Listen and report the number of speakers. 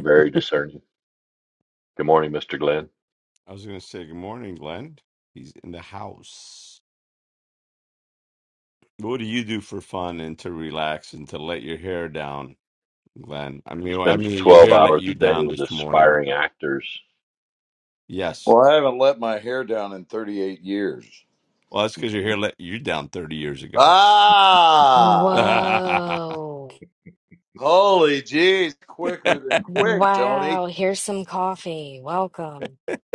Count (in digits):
4